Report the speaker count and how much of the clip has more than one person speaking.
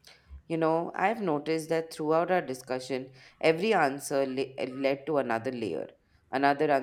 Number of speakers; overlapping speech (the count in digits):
1, no overlap